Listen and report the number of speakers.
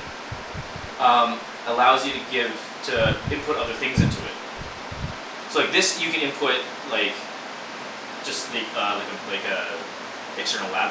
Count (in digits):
1